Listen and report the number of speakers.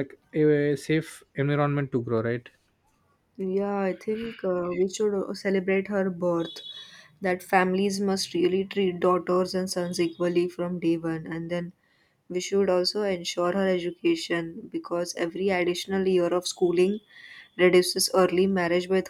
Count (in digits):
2